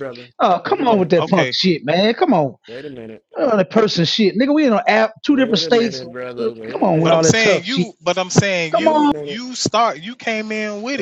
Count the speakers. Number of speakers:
3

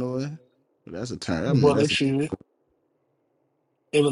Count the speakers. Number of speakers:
2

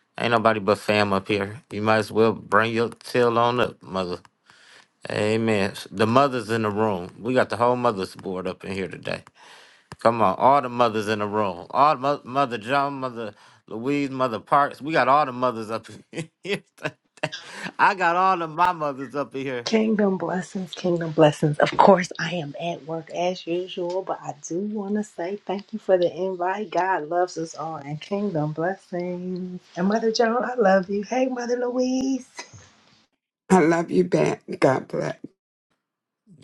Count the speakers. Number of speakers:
3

